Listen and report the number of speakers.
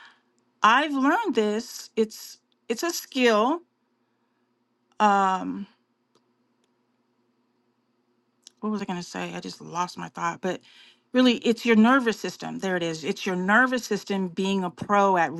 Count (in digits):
1